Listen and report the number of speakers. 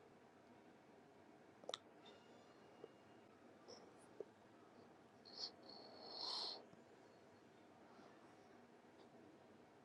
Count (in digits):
0